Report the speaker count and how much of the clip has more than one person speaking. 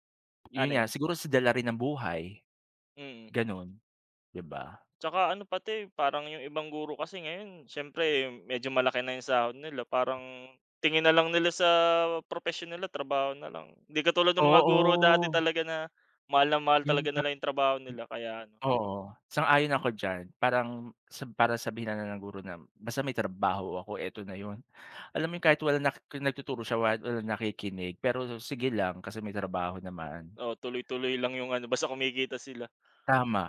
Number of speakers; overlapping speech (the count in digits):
2, about 5%